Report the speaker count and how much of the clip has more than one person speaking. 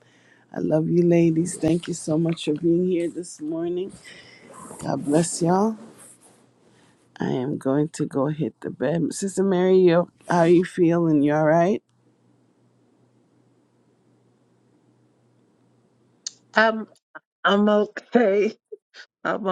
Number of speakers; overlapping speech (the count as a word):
two, no overlap